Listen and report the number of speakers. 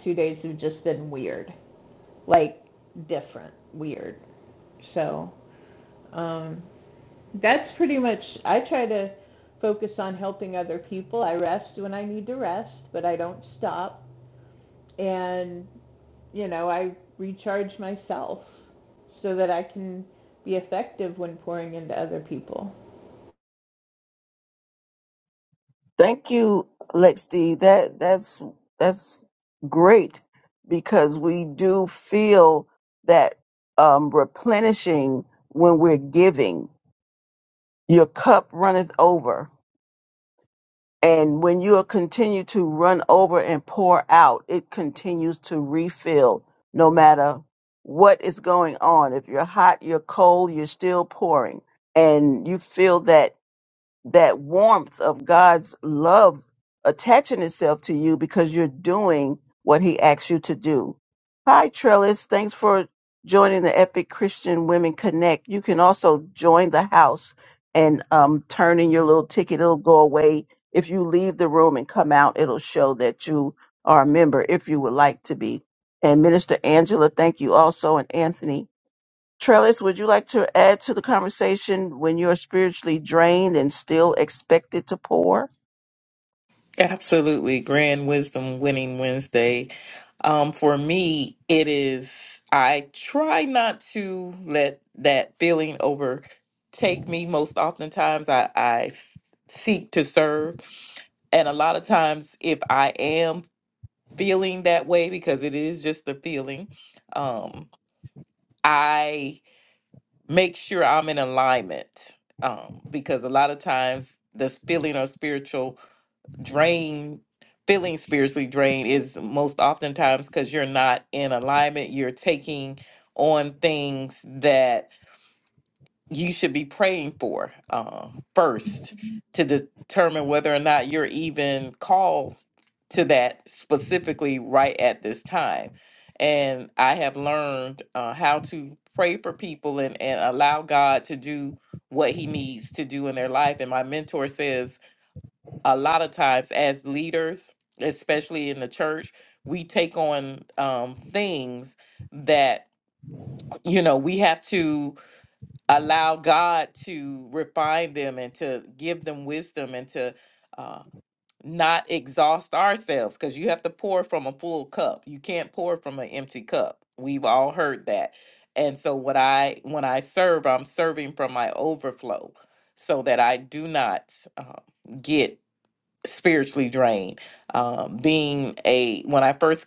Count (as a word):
three